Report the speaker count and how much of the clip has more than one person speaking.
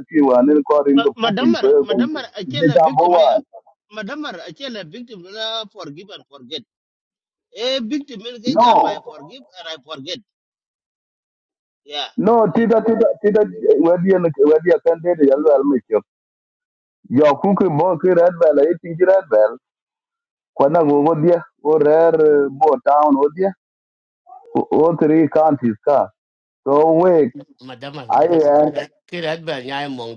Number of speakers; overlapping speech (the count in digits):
3, about 10%